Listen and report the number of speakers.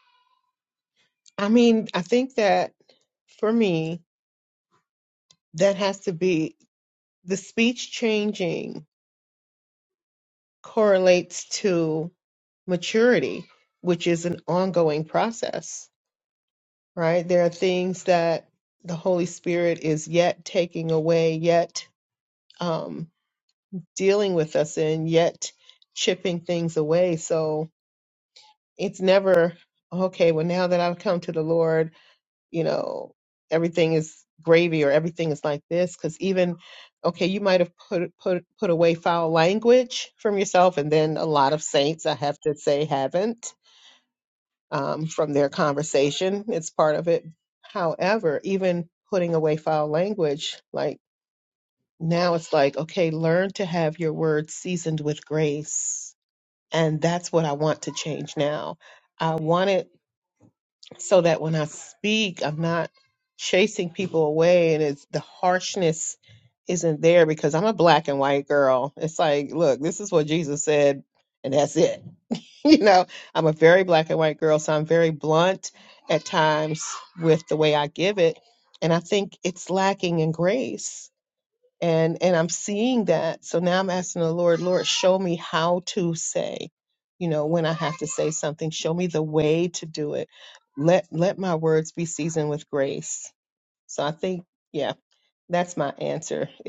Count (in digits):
1